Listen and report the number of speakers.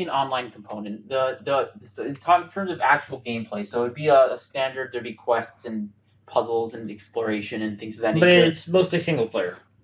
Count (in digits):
2